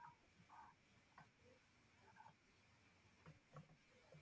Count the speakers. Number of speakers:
0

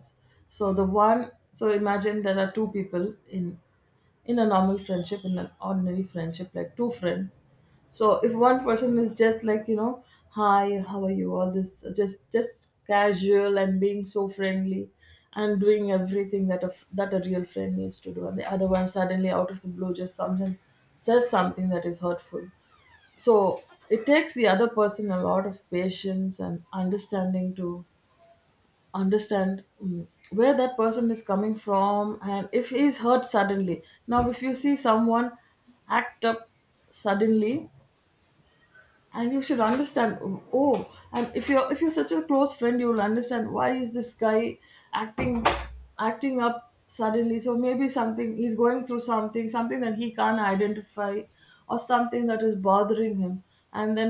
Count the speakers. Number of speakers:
1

